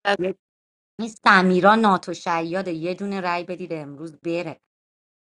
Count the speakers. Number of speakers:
1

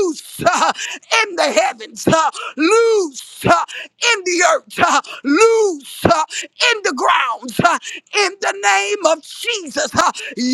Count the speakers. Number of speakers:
1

